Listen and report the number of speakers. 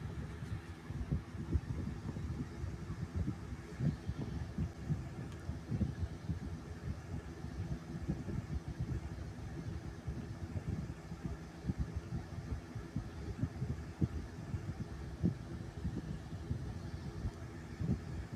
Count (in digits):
0